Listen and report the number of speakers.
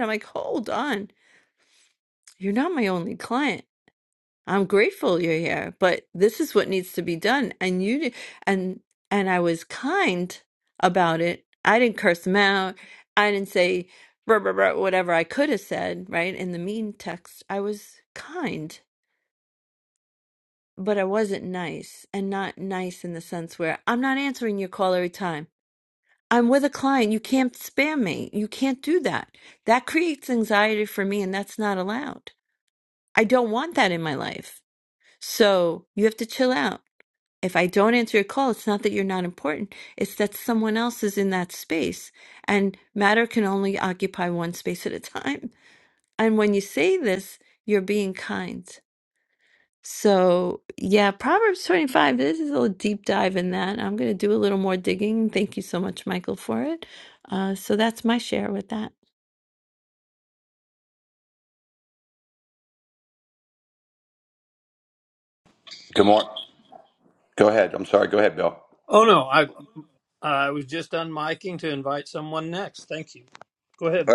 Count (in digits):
3